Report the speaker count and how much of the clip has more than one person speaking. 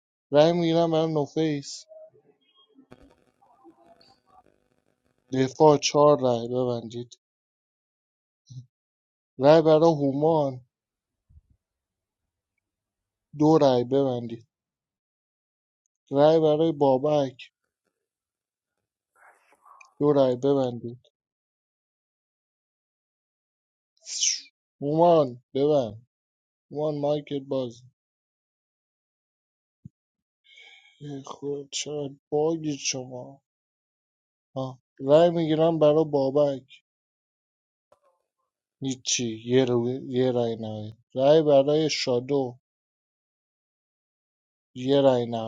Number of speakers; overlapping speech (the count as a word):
one, no overlap